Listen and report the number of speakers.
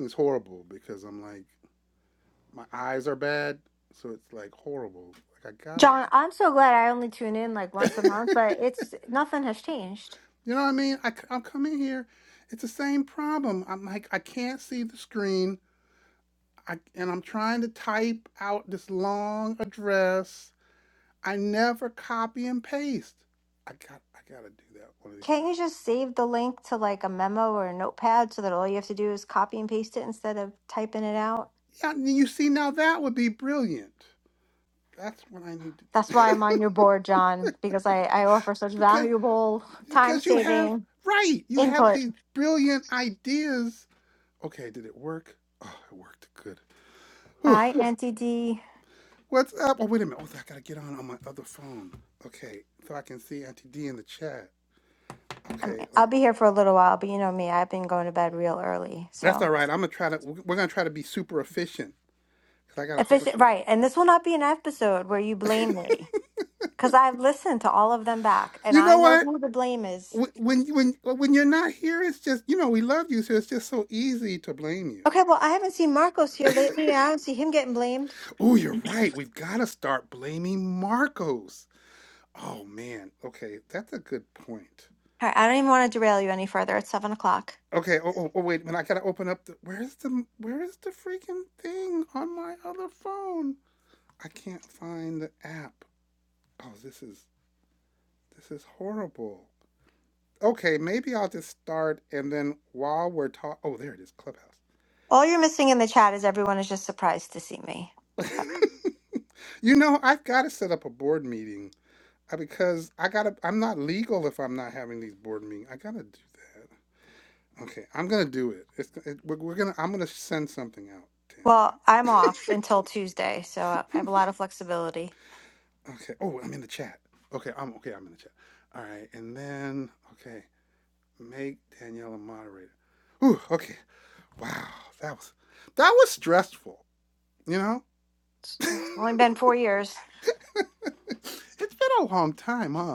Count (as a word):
two